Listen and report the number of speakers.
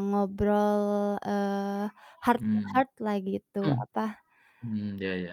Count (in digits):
2